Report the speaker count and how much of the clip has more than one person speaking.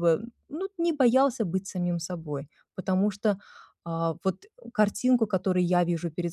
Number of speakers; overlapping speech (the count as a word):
one, no overlap